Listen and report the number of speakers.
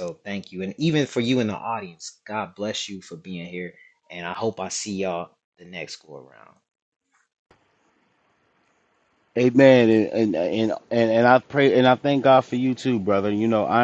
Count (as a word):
two